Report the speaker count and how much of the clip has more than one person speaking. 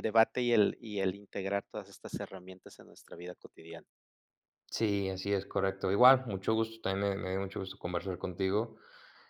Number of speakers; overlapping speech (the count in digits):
2, no overlap